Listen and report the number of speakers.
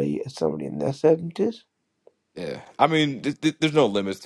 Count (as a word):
two